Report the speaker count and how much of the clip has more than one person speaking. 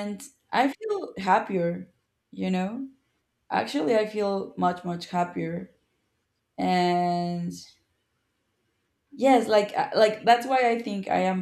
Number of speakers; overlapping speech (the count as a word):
one, no overlap